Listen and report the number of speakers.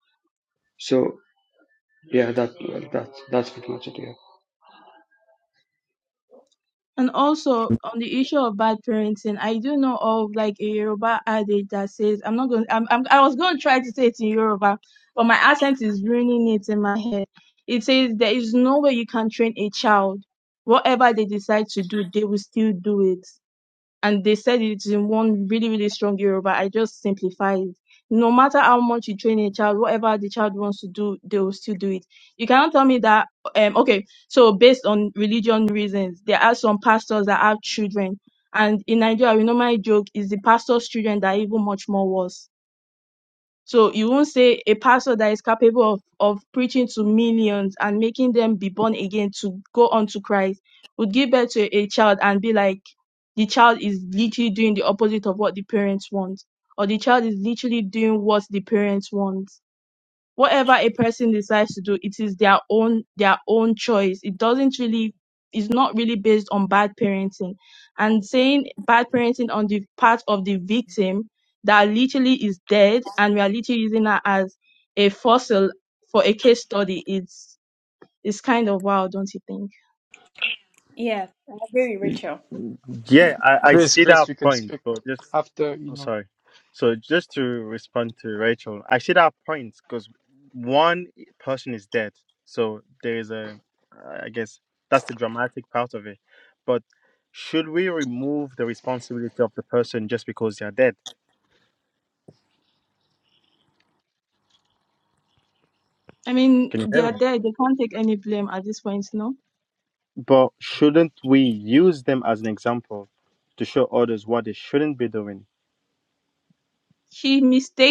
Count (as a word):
five